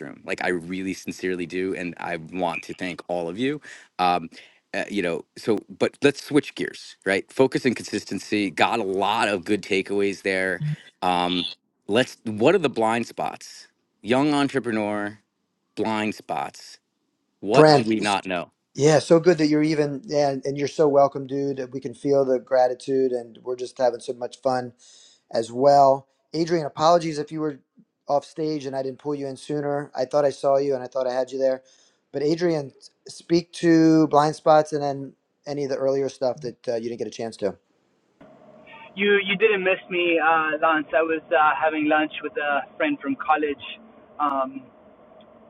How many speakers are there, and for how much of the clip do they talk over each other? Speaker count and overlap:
3, about 1%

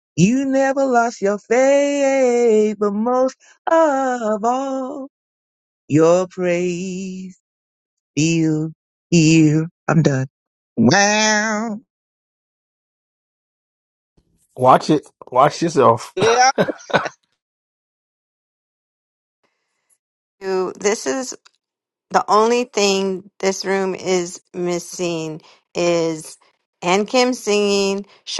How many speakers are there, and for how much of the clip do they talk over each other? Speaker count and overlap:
3, no overlap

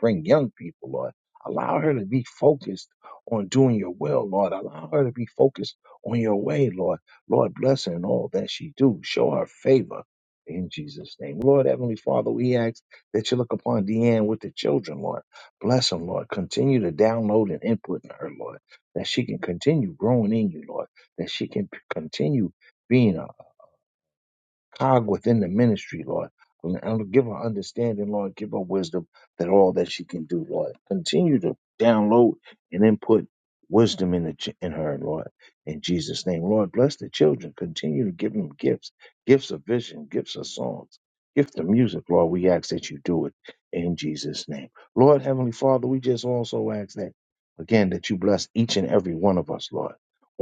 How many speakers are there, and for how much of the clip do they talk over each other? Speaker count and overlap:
1, no overlap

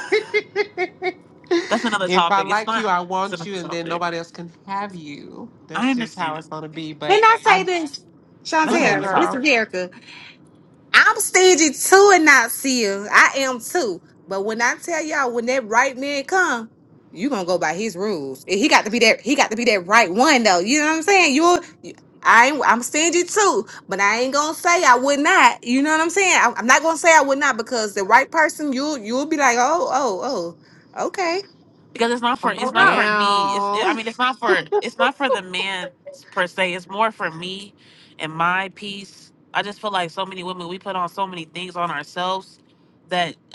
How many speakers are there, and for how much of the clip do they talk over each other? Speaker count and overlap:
3, about 12%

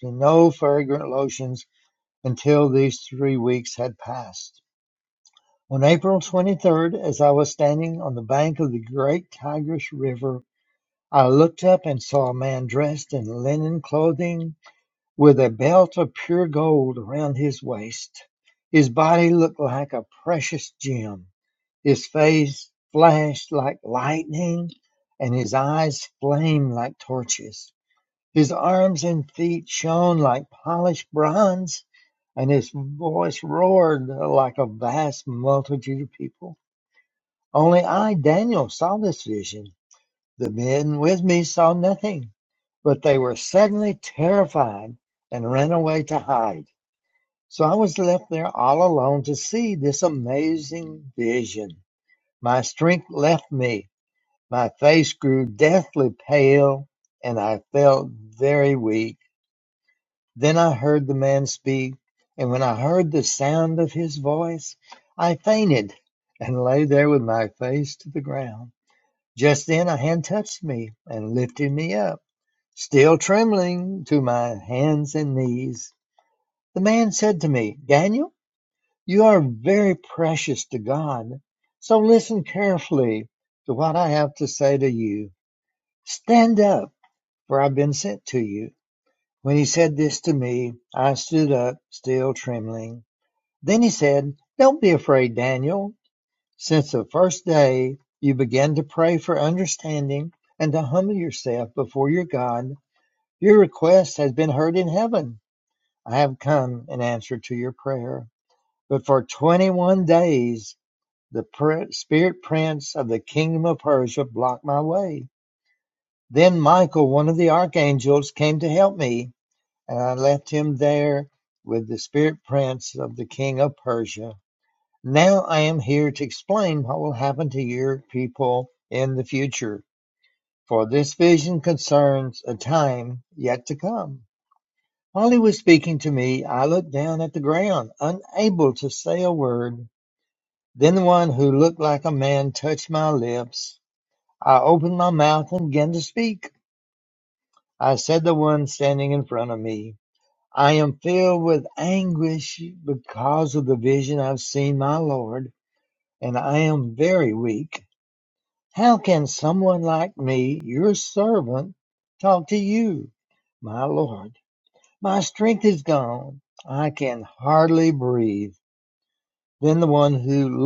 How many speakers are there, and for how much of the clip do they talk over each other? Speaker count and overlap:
1, no overlap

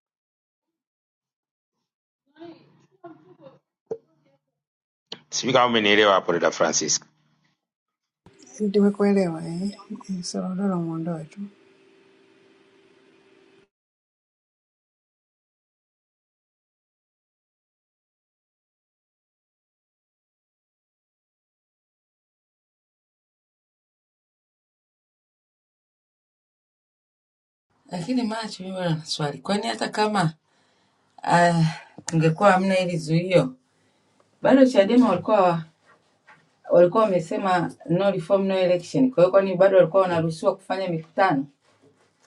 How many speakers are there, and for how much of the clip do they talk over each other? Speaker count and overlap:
3, no overlap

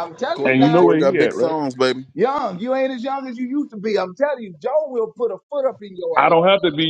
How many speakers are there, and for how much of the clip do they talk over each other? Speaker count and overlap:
3, about 20%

